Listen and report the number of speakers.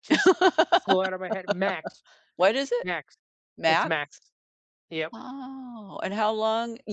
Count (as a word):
two